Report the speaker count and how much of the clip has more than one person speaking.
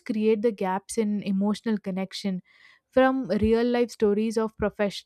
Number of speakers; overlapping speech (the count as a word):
one, no overlap